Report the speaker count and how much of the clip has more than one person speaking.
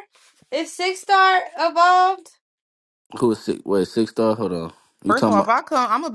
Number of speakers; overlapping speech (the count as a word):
three, about 7%